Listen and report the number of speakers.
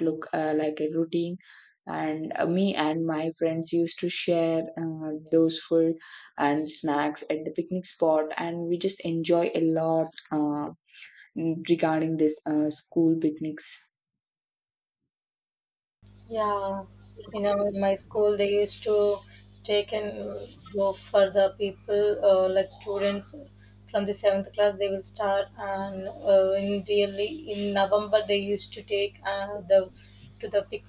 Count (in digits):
2